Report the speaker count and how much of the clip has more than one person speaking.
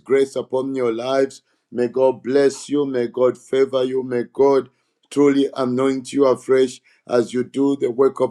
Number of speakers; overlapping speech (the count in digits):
1, no overlap